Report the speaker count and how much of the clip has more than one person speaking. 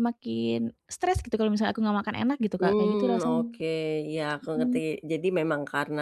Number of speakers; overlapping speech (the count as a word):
two, about 19%